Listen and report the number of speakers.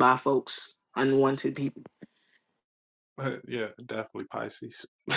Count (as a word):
two